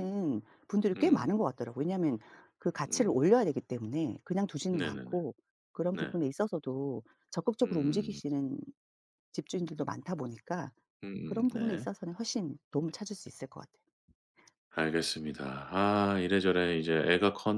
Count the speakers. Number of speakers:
2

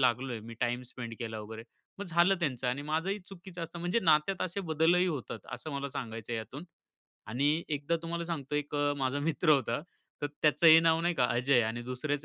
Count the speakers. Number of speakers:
1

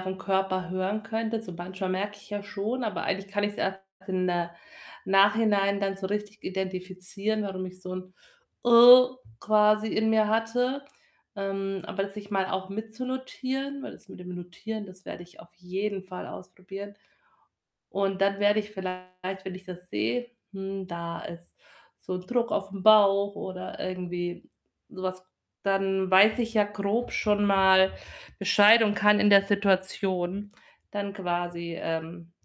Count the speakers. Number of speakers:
1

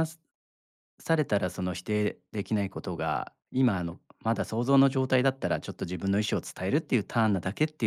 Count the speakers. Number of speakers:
1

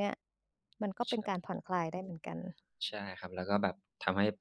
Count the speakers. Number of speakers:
2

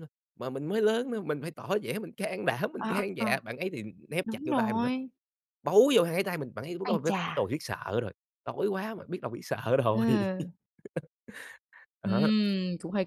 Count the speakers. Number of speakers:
2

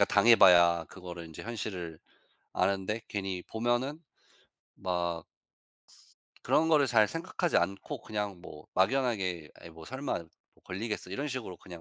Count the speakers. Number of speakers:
1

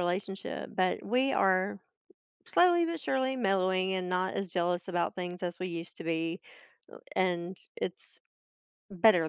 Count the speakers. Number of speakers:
1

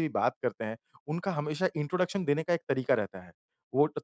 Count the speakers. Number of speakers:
1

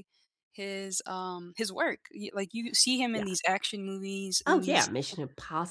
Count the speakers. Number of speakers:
2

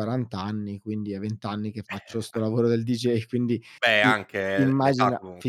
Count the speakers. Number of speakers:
2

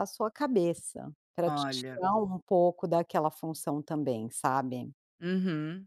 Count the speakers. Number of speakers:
2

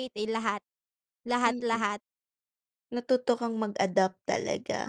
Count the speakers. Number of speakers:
2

